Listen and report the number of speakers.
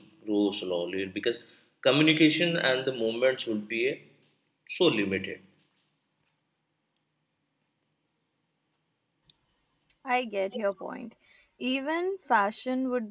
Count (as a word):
two